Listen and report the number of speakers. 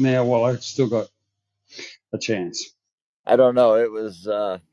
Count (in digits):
2